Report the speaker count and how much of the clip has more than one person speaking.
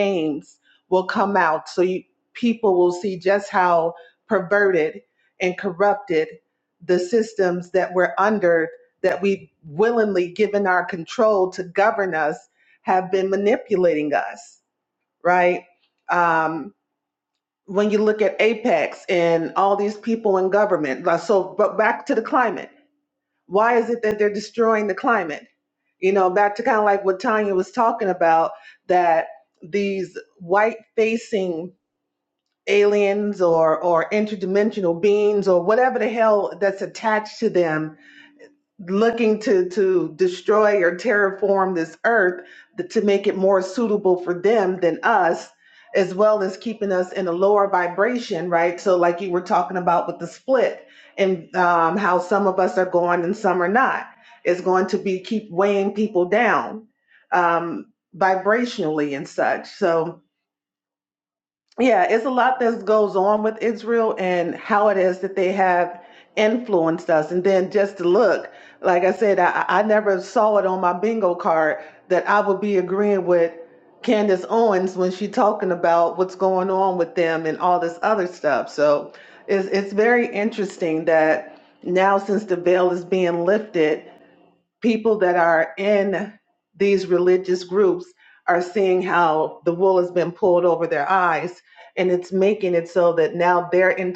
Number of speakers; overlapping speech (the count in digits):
1, no overlap